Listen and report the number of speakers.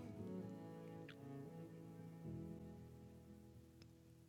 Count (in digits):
0